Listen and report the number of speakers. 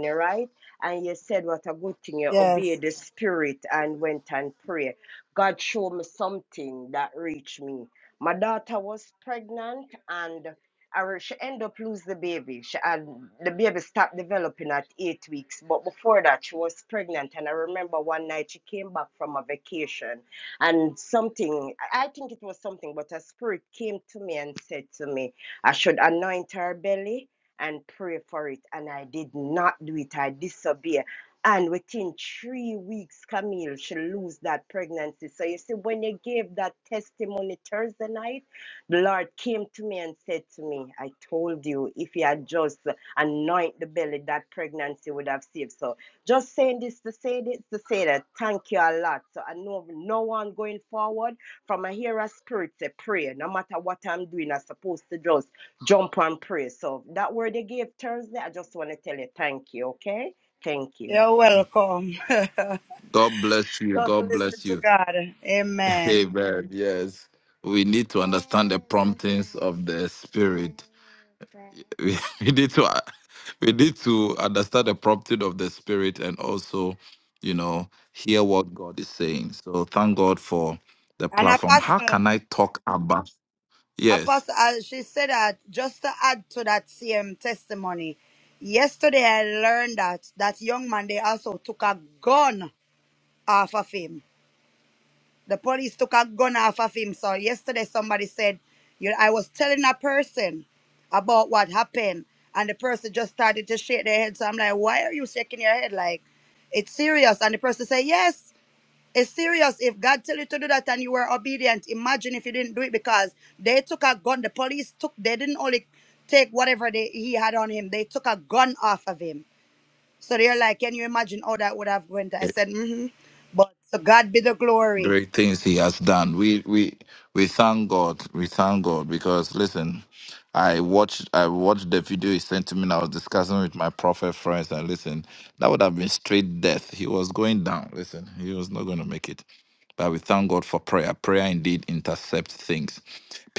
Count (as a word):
three